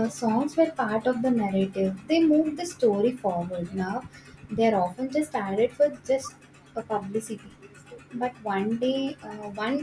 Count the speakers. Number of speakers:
1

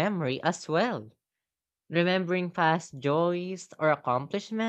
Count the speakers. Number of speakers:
1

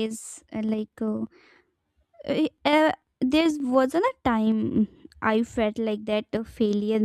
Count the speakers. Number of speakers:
1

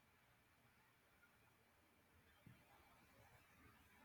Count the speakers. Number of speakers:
0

